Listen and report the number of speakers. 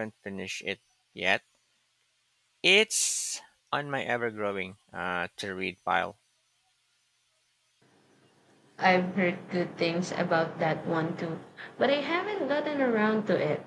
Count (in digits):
2